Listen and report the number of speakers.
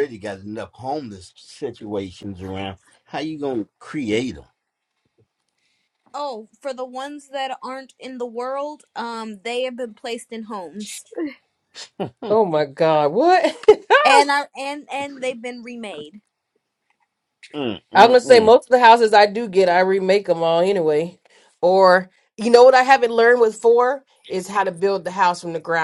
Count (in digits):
3